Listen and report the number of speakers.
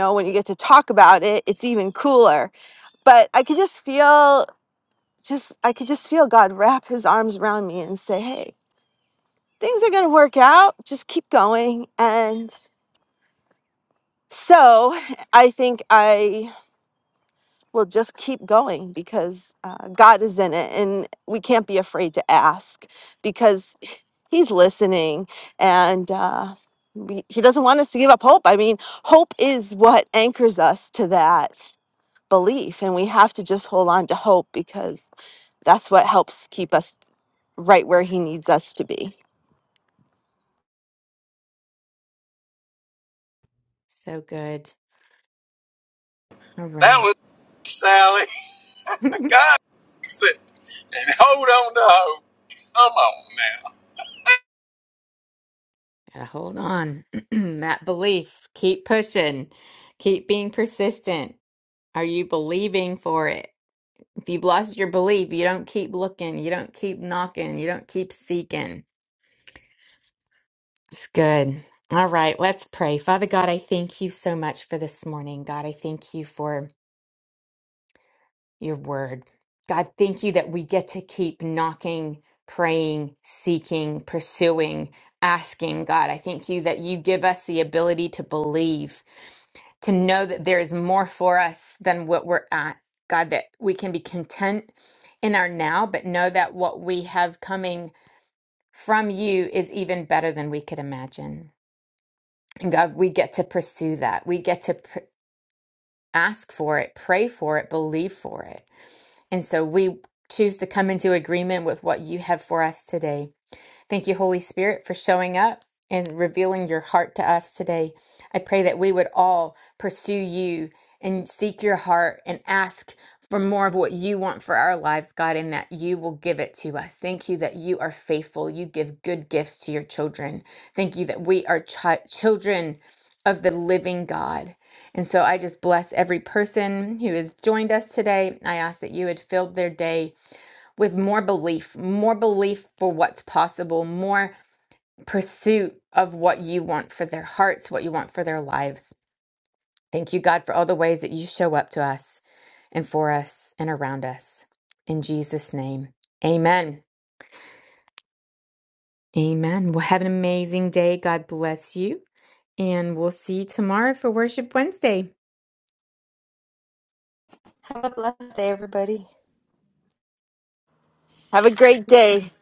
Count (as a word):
four